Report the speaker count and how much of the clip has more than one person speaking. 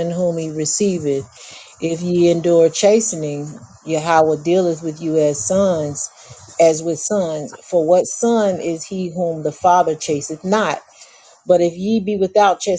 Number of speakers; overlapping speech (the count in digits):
1, no overlap